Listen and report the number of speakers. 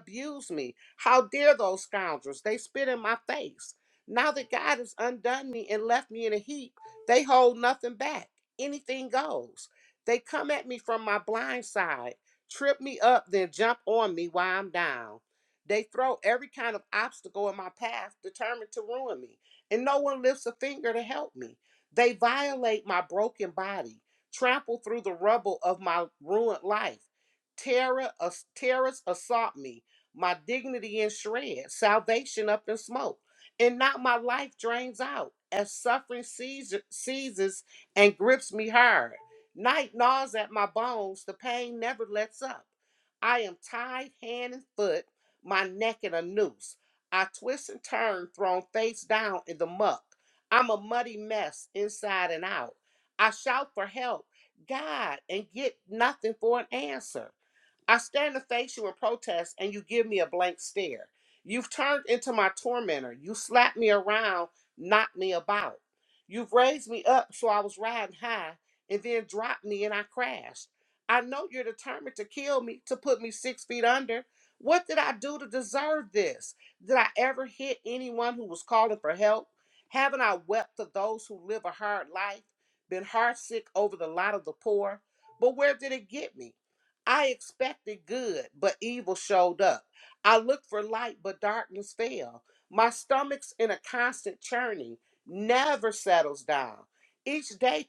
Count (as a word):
one